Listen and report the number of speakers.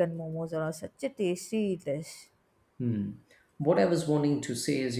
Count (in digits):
2